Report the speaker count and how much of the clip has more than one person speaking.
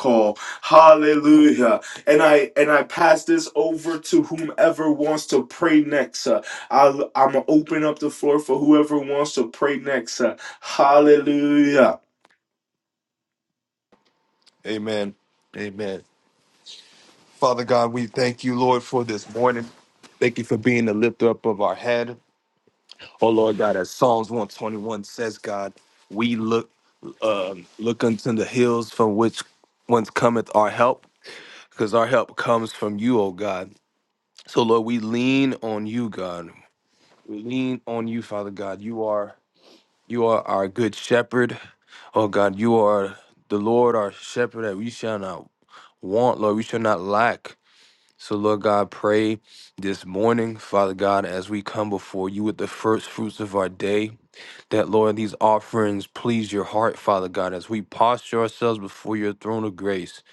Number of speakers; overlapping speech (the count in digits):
2, no overlap